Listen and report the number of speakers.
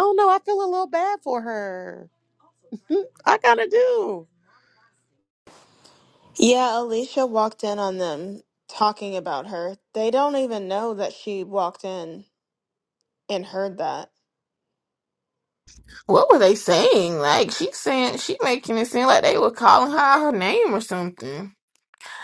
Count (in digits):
3